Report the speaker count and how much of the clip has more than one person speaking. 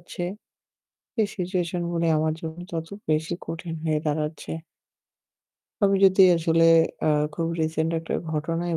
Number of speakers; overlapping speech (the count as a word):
one, no overlap